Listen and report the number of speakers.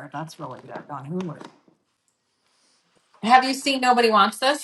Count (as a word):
two